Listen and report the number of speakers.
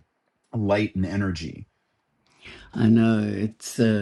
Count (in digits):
2